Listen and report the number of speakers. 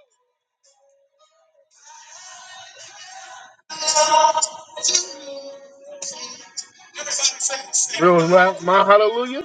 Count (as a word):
one